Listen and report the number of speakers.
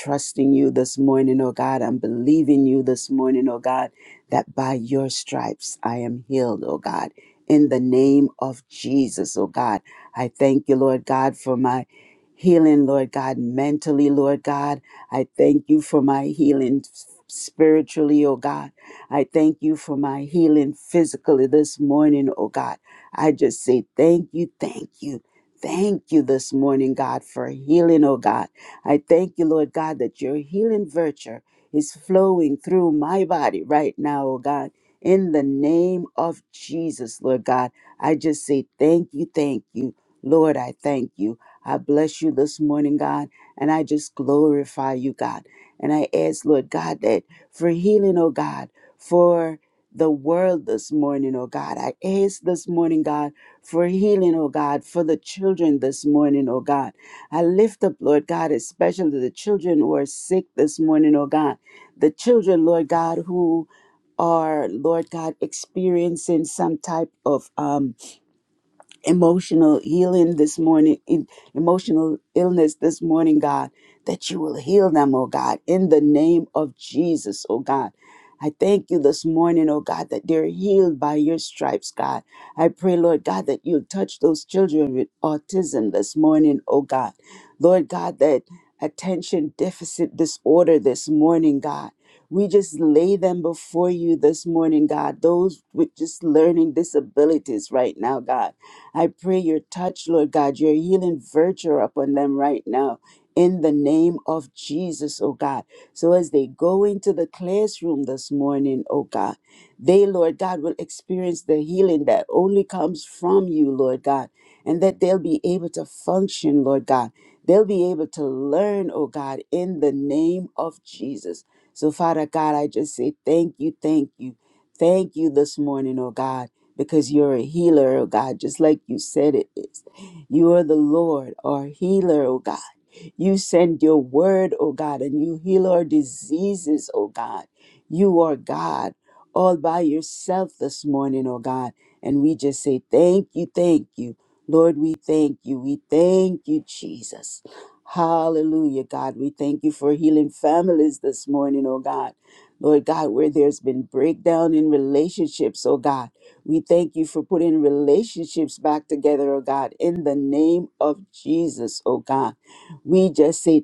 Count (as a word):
one